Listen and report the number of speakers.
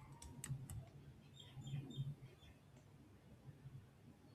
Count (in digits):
0